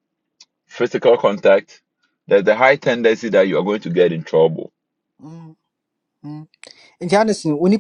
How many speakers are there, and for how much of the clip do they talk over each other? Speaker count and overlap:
2, no overlap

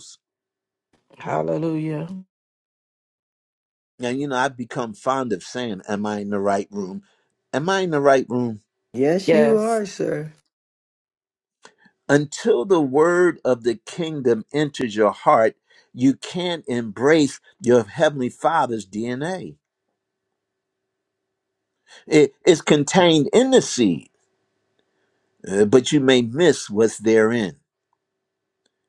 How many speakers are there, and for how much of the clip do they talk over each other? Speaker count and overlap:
3, about 2%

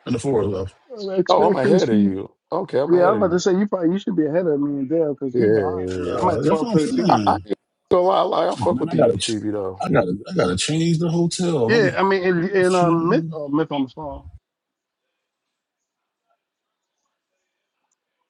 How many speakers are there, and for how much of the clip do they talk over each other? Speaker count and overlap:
3, about 26%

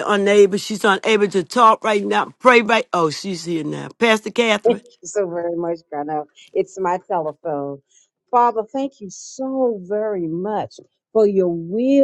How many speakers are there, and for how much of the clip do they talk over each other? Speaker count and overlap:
2, about 1%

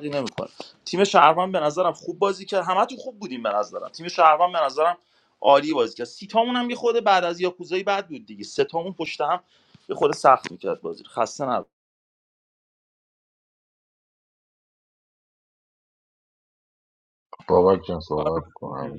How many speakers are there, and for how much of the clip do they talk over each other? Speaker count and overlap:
2, no overlap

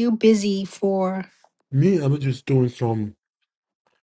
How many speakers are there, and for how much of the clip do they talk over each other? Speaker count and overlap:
2, no overlap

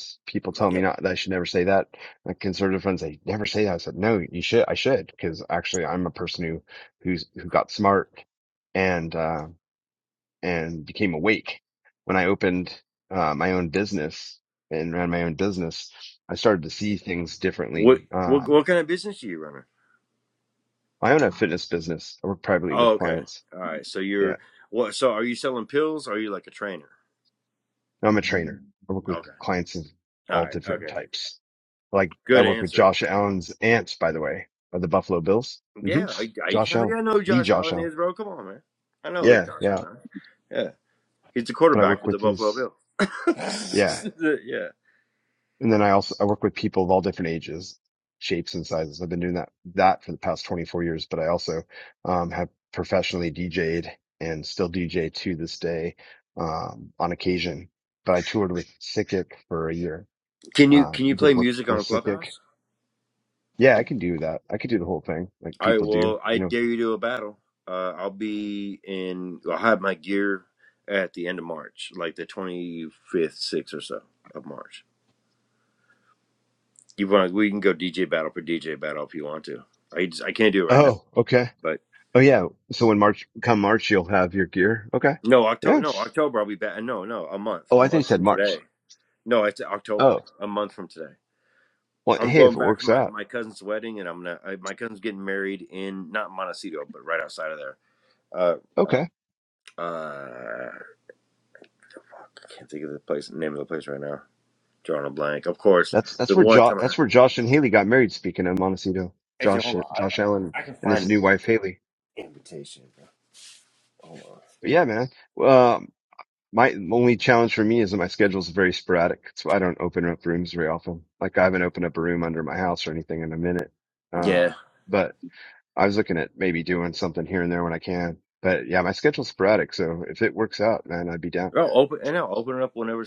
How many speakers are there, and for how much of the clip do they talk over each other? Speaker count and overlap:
2, about 10%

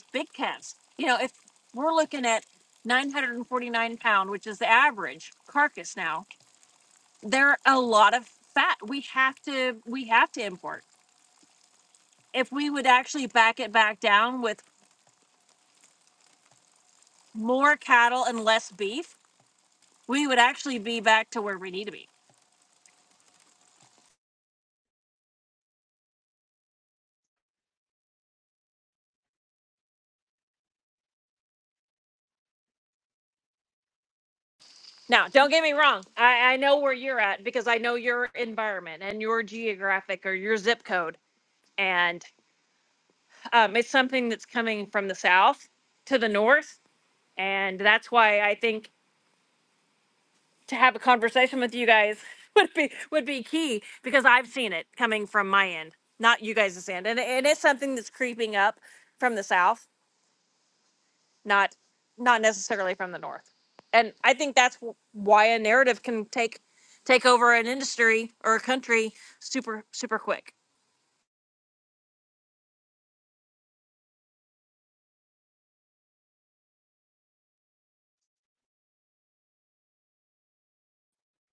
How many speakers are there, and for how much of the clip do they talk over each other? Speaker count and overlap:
1, no overlap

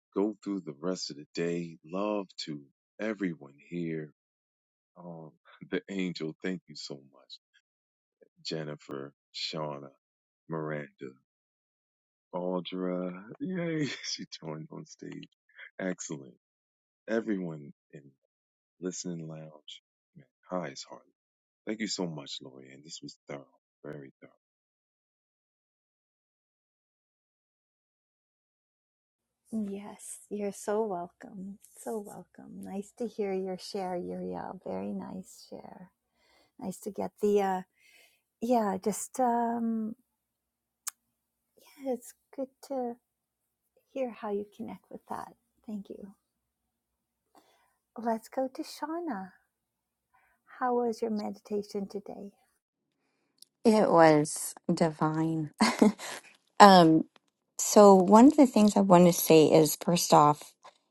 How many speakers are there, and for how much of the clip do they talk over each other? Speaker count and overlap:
3, no overlap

